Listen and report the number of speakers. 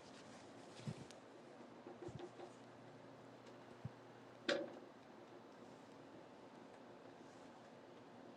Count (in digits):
0